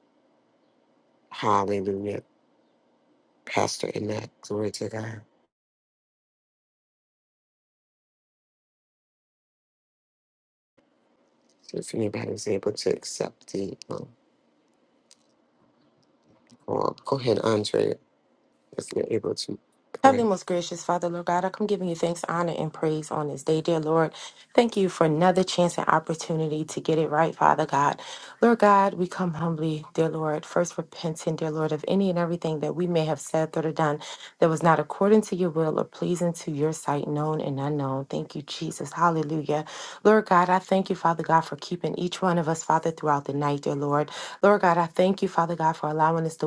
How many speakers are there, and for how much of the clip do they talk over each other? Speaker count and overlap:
two, under 1%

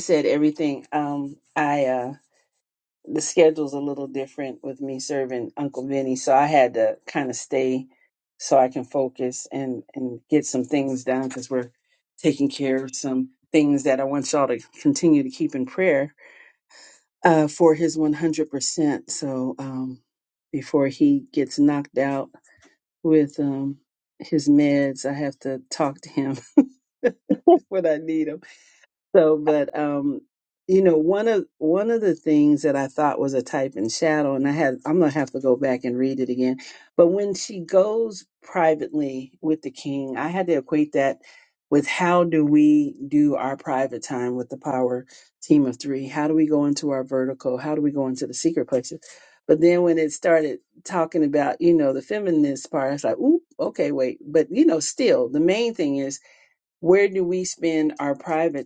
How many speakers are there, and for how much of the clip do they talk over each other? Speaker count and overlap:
one, no overlap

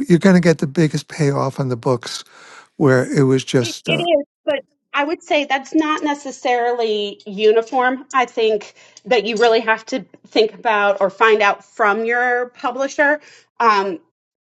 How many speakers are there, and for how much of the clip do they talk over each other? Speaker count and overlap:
two, about 3%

